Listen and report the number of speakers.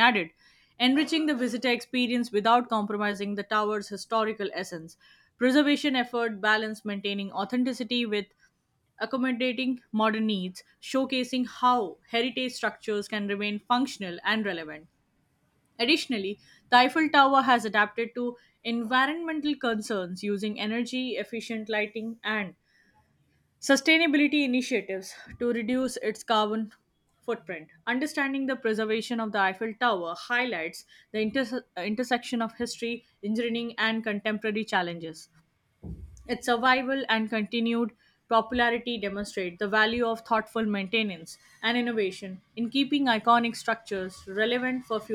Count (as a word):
one